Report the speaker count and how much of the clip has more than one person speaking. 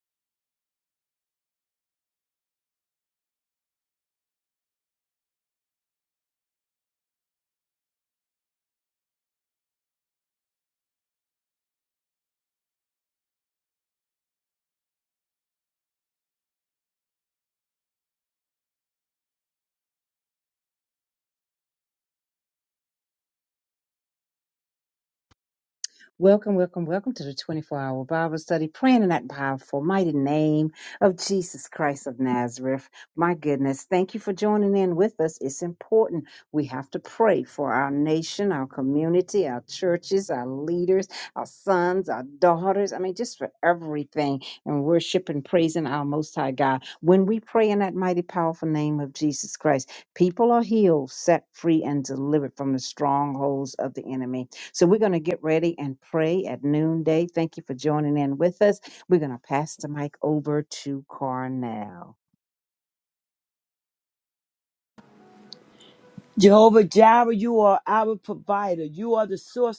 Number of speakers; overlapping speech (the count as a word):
two, no overlap